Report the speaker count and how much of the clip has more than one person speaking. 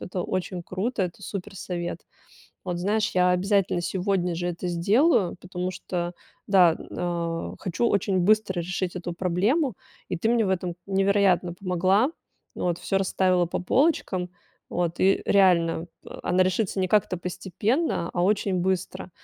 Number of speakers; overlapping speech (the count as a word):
one, no overlap